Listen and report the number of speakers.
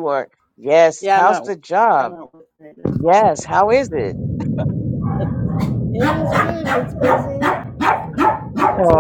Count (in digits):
2